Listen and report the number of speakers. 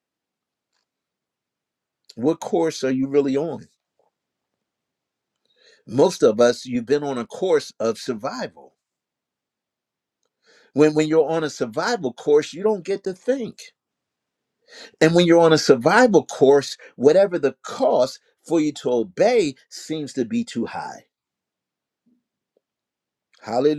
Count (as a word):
one